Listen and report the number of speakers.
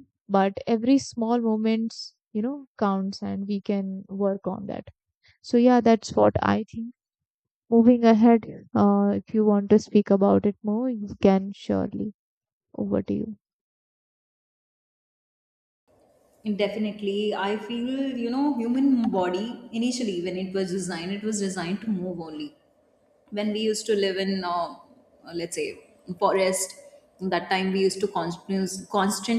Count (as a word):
two